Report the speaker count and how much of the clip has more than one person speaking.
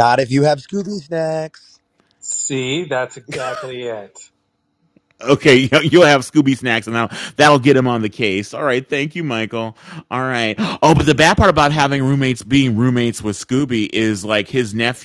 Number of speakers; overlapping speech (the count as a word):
three, no overlap